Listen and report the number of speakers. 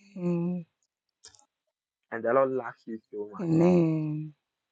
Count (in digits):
2